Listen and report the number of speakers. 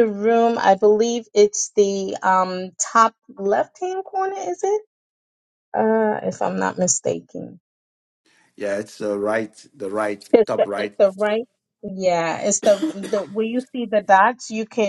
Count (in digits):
2